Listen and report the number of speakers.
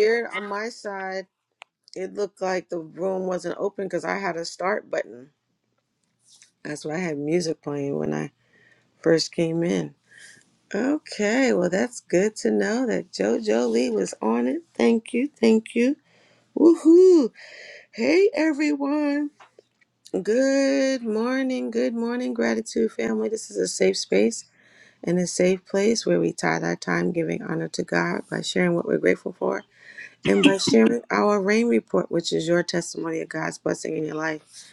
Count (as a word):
one